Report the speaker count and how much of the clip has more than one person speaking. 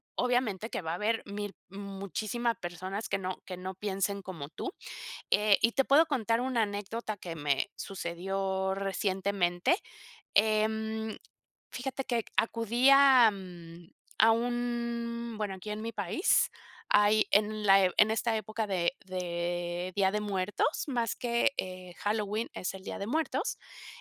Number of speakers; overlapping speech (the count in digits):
1, no overlap